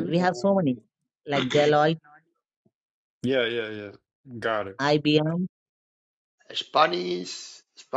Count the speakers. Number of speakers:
three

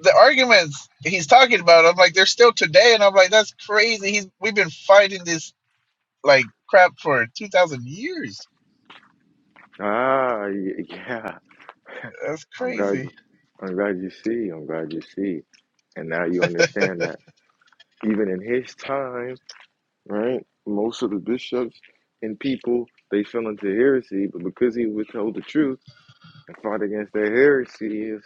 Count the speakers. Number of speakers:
two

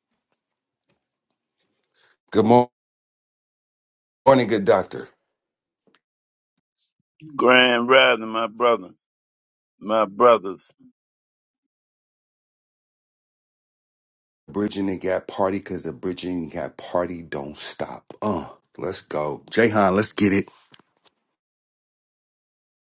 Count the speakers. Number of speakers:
two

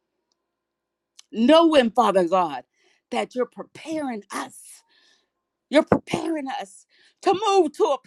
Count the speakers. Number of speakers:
one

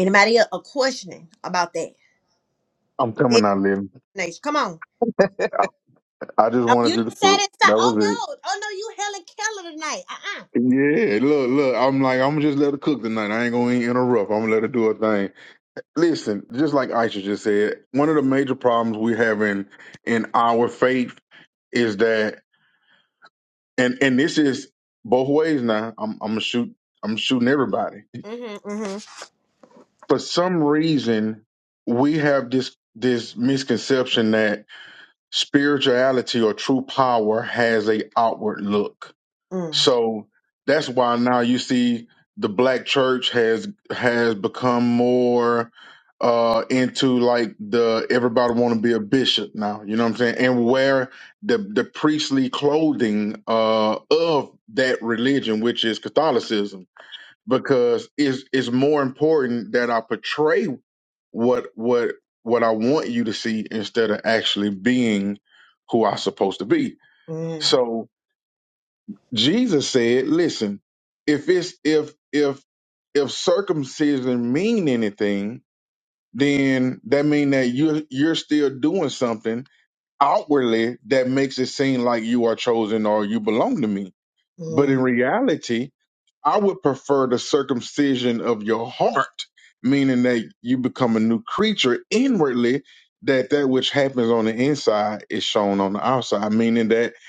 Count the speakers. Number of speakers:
two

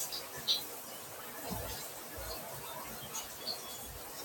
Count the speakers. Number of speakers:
zero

